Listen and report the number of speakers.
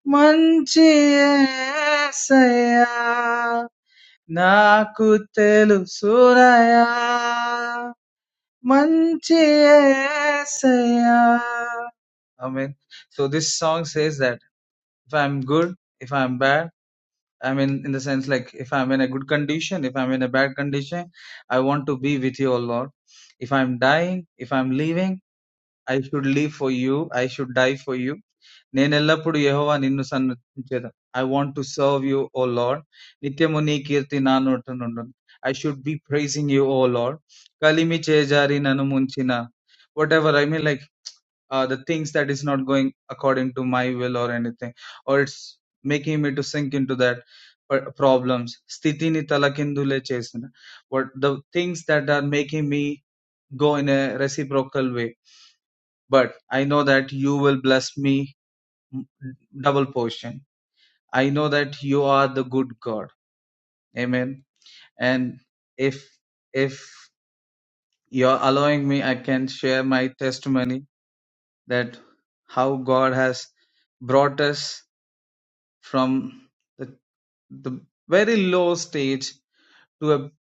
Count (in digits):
1